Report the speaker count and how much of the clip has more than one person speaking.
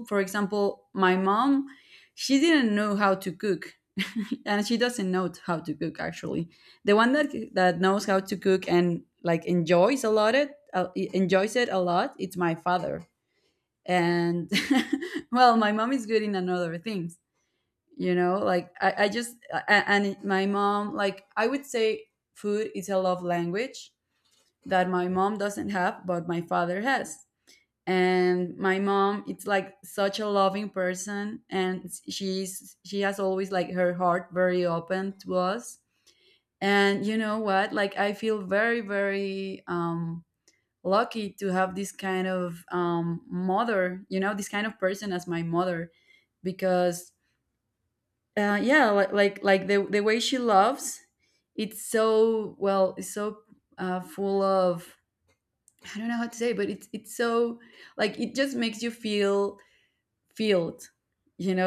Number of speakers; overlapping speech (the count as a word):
one, no overlap